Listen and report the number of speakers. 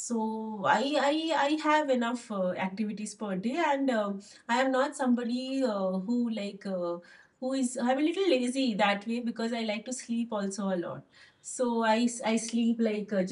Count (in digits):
1